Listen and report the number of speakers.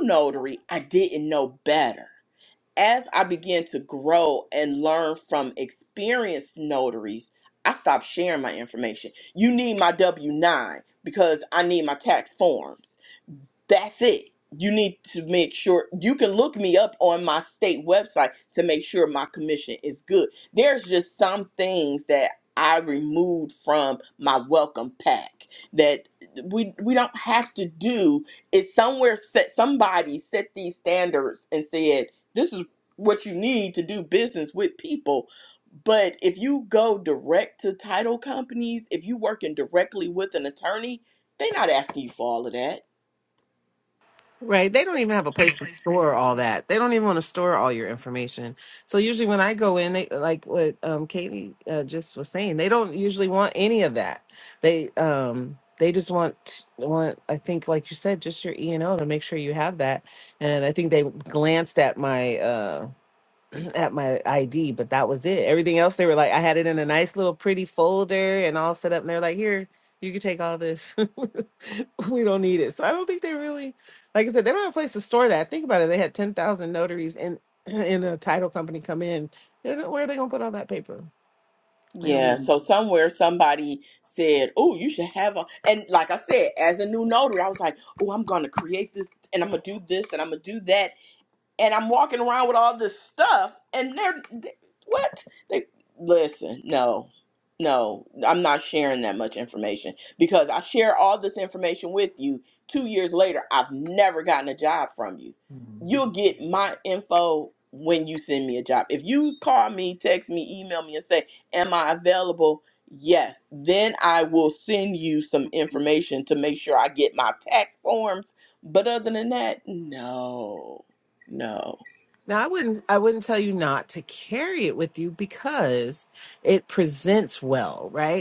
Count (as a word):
two